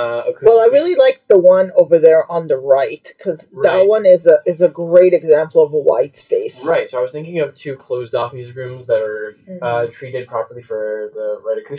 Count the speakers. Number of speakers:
2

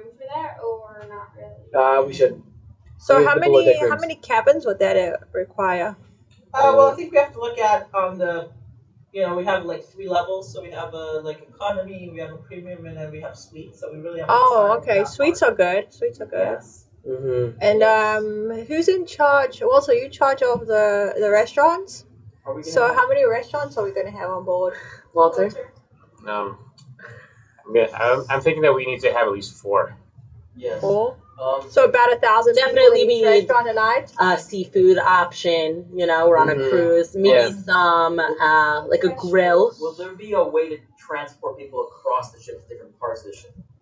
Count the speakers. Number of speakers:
7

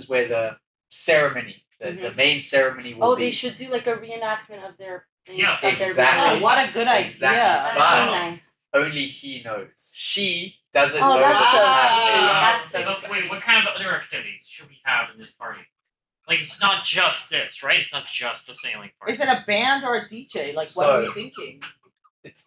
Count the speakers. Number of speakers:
4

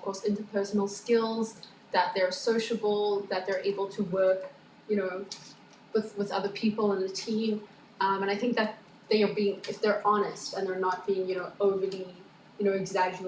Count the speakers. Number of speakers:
1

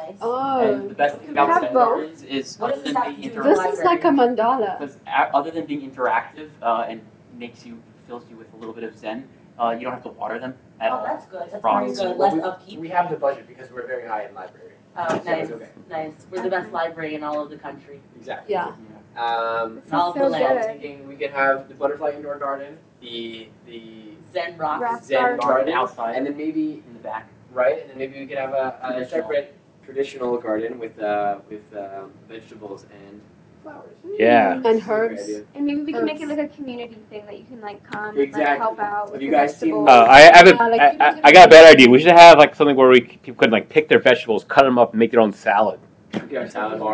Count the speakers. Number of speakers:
6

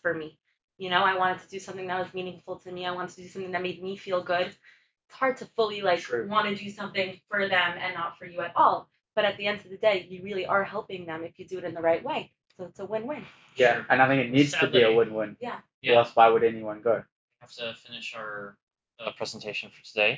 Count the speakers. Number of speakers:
3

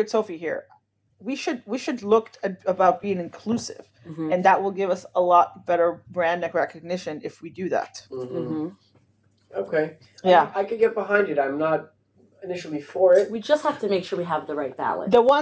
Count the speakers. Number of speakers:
3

